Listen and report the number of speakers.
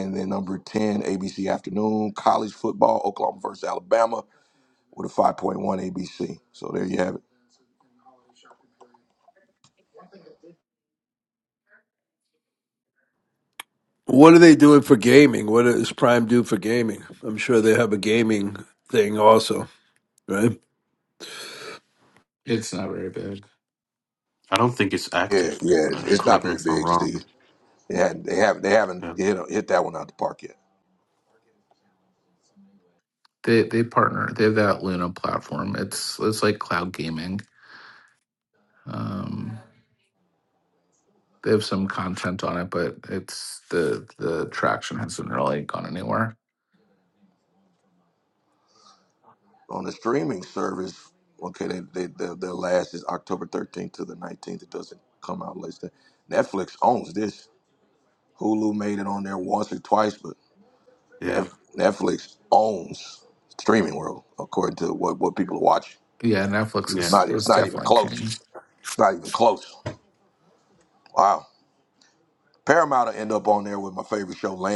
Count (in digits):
4